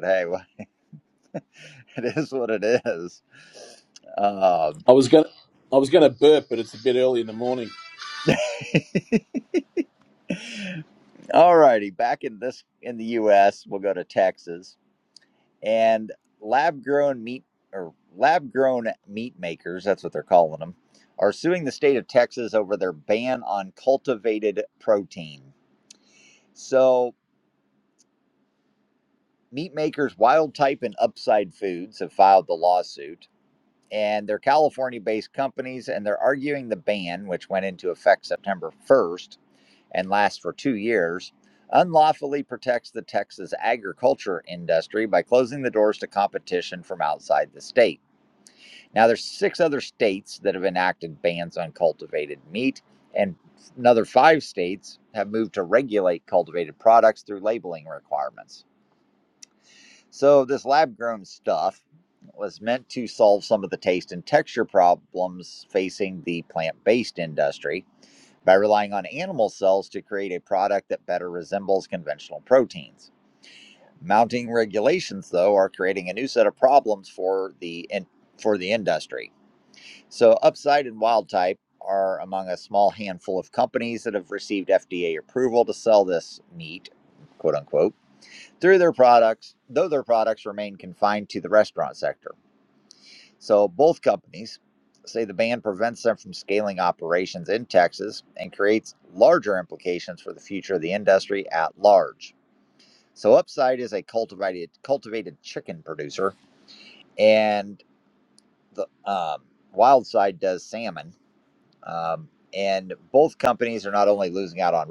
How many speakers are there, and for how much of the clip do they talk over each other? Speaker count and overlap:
2, no overlap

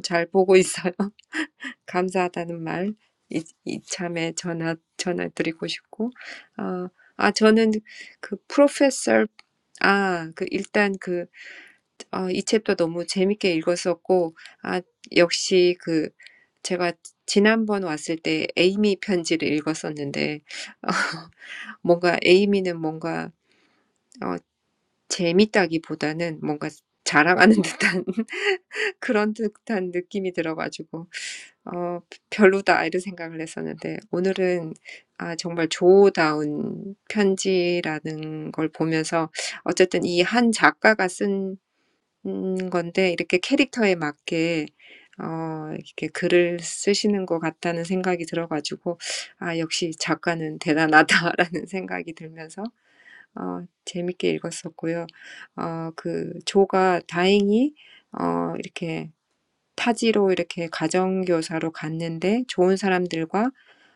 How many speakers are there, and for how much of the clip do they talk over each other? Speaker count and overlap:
1, no overlap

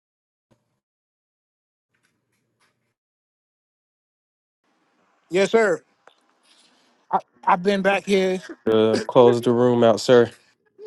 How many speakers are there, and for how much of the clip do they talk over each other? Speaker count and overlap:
2, no overlap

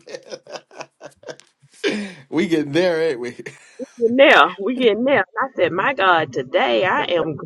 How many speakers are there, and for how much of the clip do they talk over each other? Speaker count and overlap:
2, no overlap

